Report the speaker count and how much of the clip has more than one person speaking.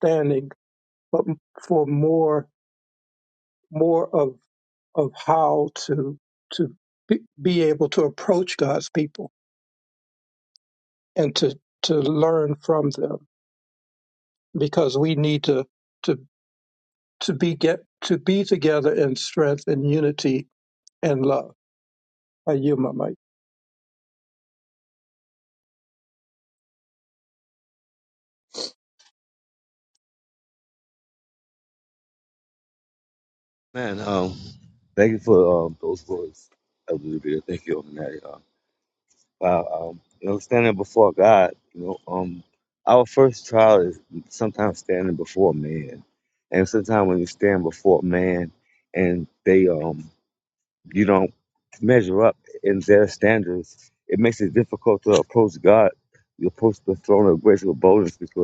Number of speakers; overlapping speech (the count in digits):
2, no overlap